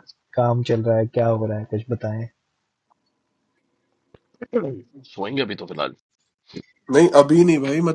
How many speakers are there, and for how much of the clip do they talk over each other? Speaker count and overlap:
3, no overlap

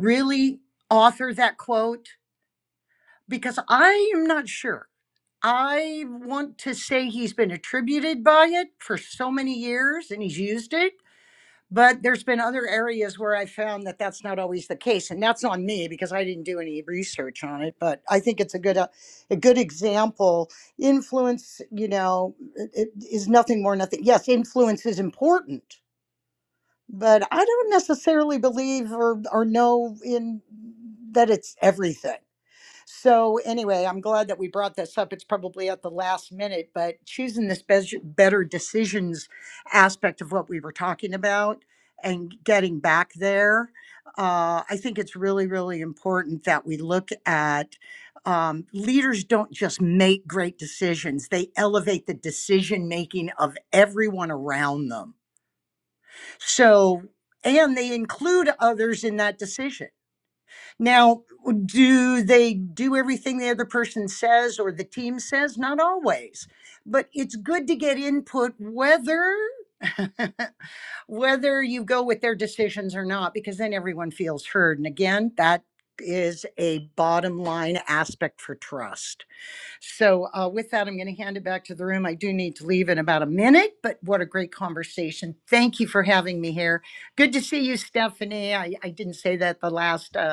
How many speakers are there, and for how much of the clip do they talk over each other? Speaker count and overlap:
1, no overlap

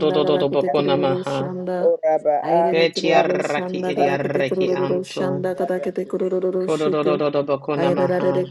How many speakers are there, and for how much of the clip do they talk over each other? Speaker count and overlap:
3, about 72%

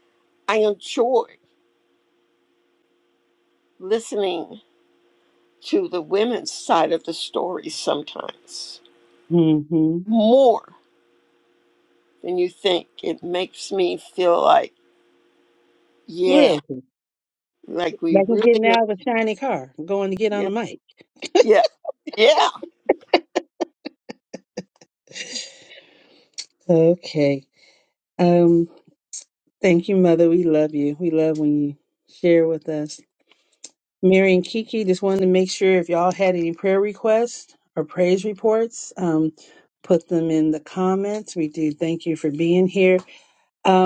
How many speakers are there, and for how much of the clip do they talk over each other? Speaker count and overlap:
2, about 3%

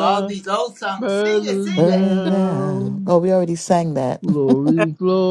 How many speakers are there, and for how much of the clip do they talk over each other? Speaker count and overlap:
3, about 44%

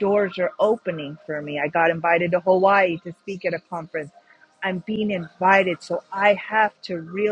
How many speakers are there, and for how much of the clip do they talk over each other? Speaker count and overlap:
1, no overlap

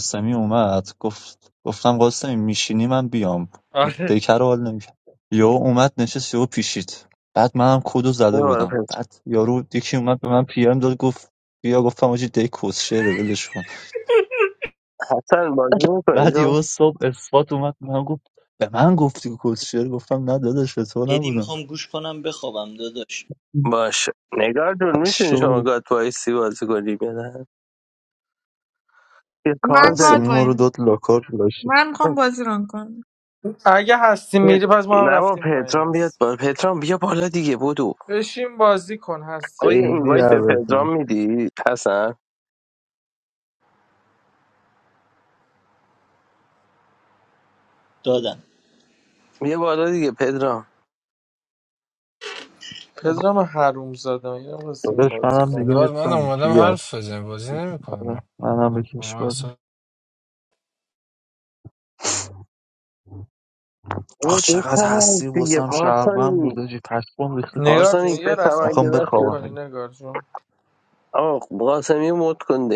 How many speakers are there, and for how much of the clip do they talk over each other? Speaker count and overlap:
6, about 17%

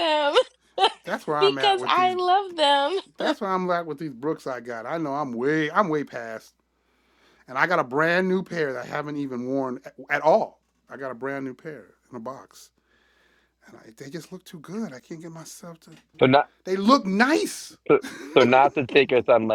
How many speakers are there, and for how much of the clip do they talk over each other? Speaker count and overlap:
3, about 4%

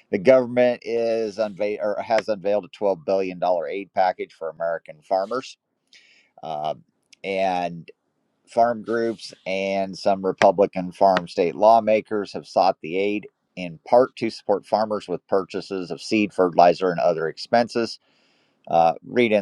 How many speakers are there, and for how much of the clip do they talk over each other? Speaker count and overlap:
1, no overlap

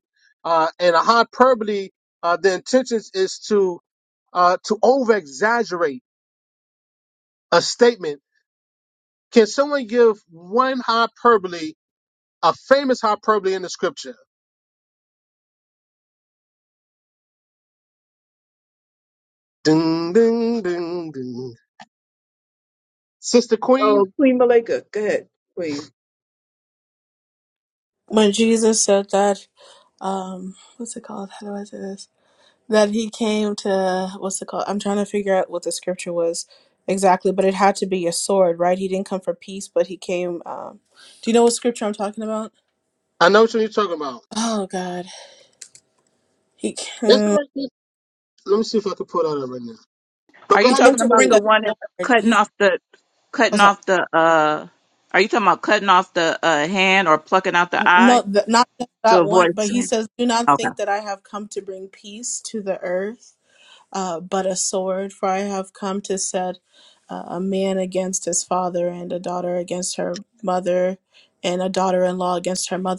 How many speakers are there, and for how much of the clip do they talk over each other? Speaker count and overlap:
4, about 6%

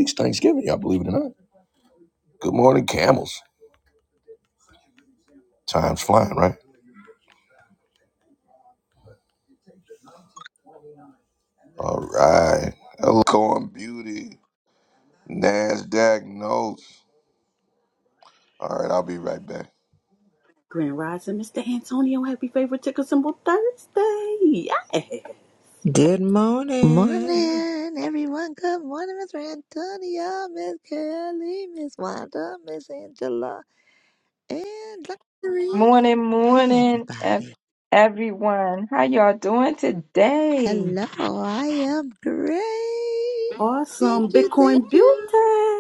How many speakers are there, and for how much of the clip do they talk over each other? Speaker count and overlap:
5, about 7%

